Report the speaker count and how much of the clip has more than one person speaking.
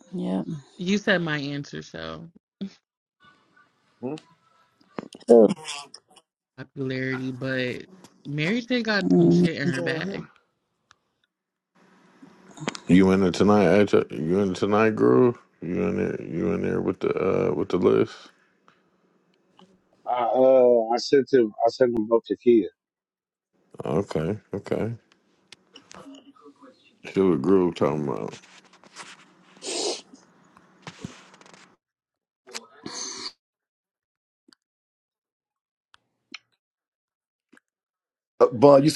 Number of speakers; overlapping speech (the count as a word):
five, about 2%